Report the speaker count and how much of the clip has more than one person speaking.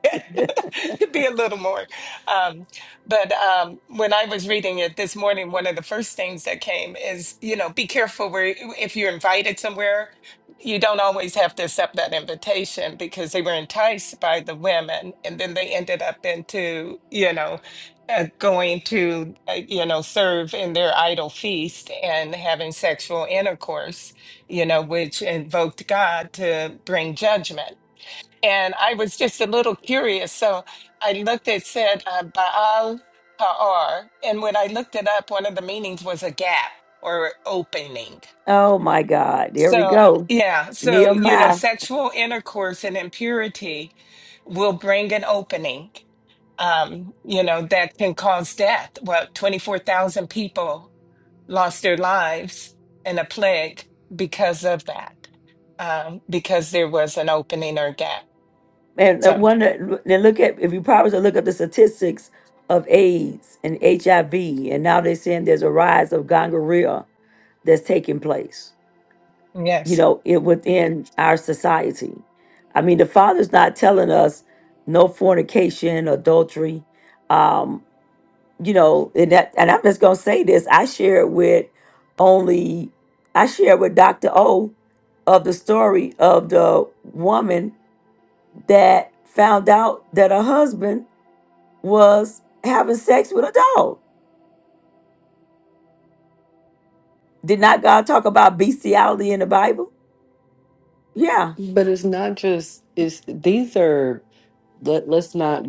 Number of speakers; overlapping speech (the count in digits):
3, about 1%